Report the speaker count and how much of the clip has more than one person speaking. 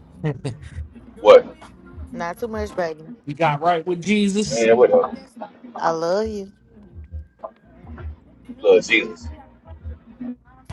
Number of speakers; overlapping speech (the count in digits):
3, about 1%